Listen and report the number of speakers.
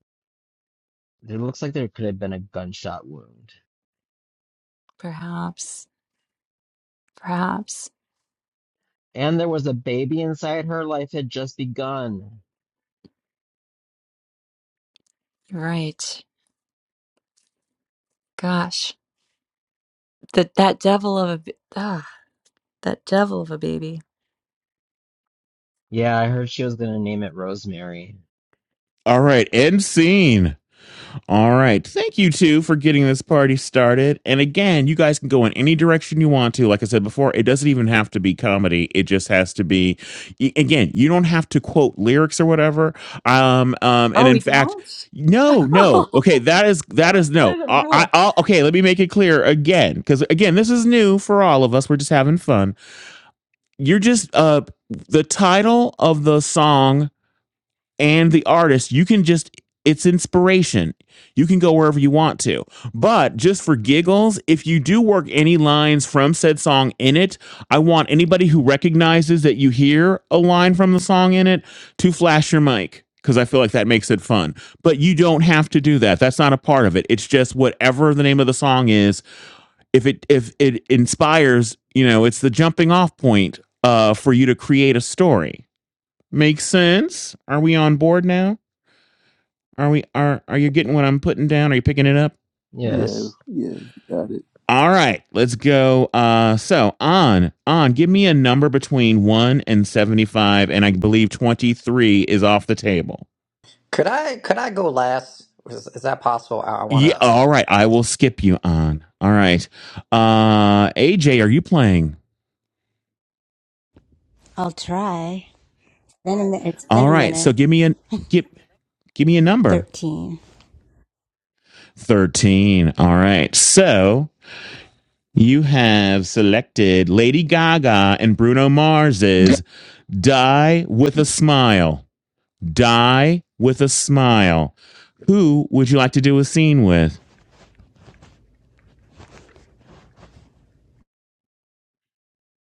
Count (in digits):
6